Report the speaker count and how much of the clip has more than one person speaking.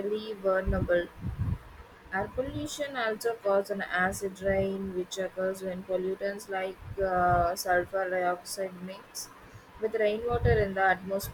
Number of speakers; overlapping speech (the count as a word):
one, no overlap